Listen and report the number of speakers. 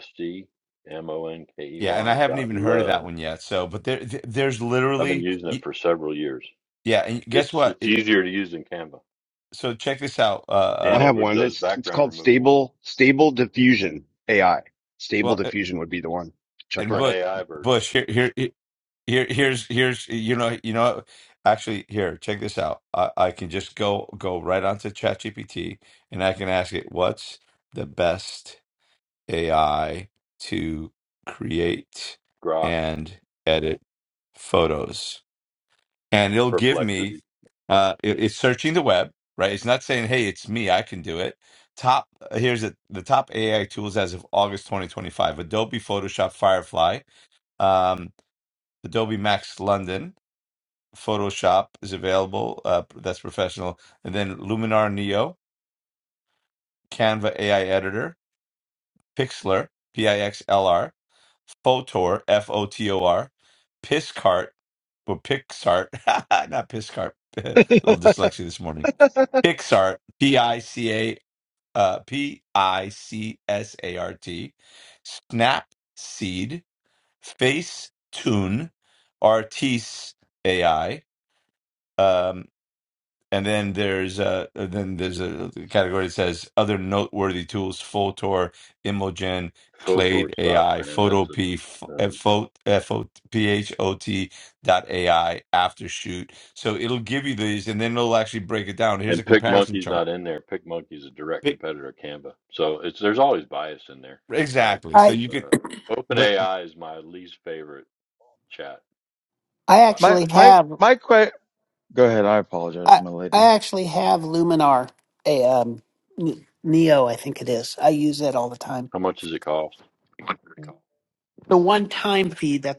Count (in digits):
5